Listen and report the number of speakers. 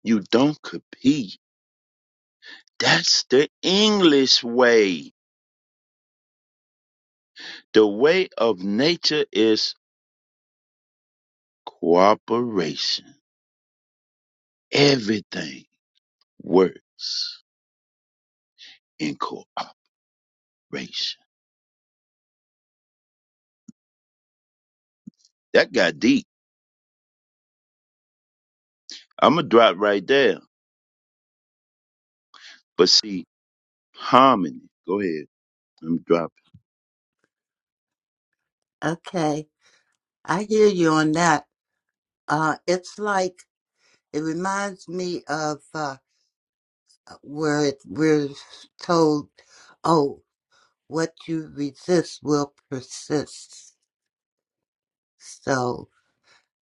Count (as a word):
two